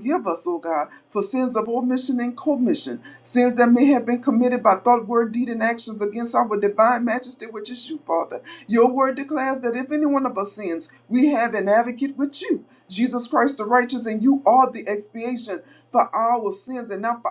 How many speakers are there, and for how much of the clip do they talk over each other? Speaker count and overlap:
one, no overlap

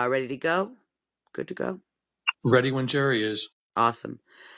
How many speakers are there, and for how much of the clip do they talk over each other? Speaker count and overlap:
two, no overlap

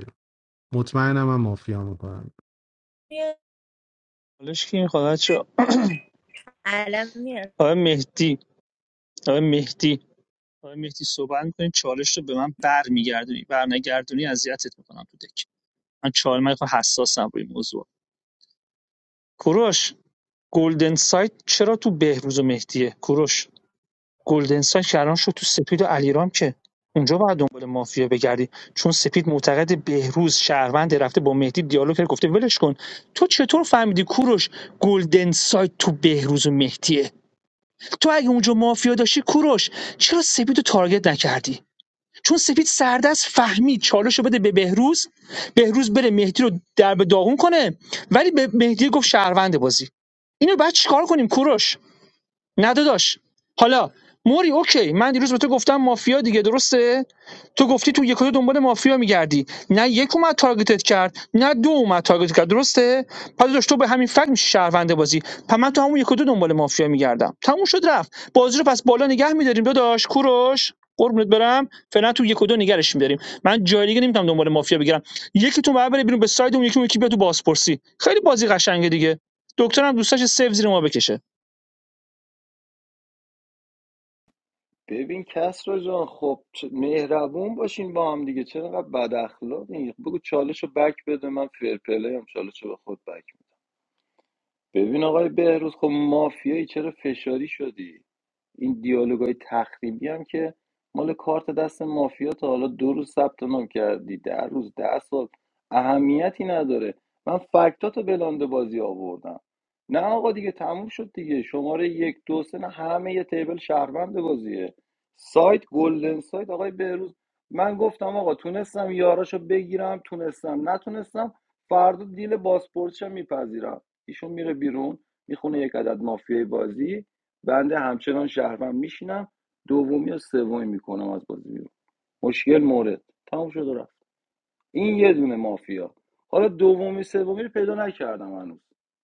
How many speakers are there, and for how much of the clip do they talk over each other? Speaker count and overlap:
four, no overlap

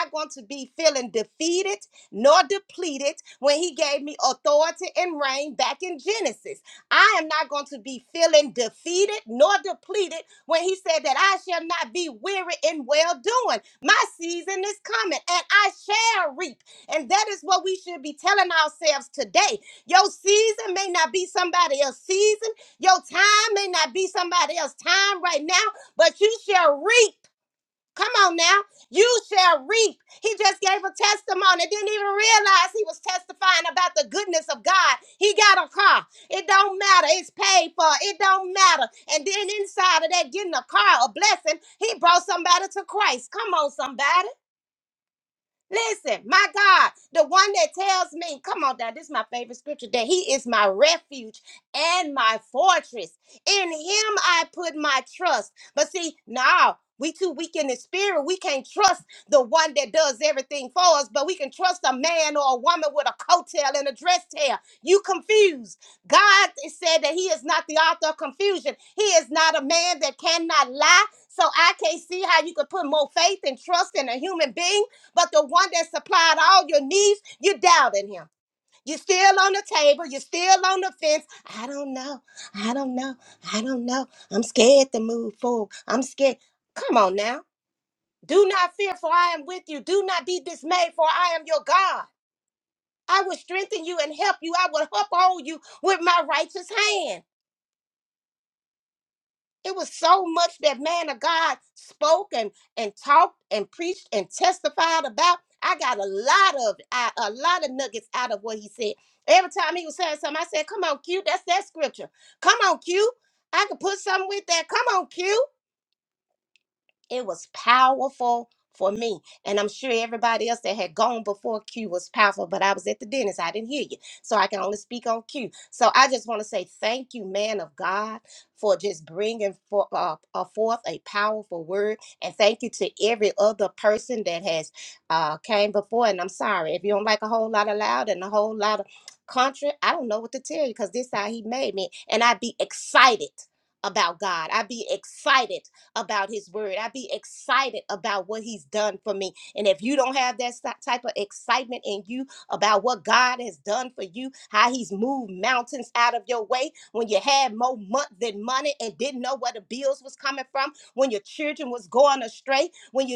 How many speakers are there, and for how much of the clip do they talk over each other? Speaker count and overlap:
one, no overlap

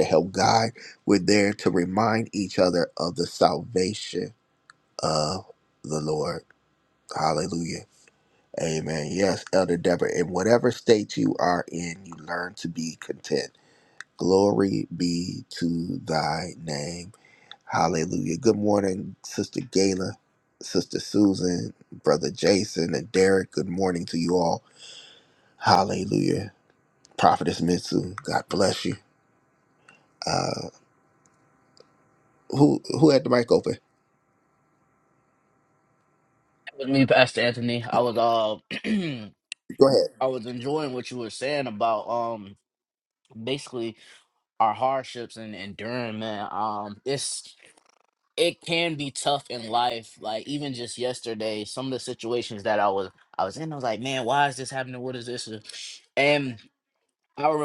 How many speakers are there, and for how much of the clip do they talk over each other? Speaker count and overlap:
two, no overlap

